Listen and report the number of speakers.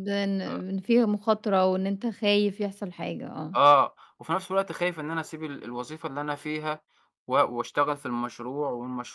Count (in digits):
2